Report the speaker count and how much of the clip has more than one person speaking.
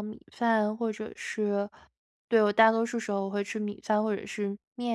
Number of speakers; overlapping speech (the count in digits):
1, no overlap